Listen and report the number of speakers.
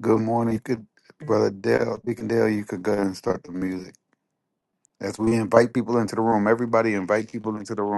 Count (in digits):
1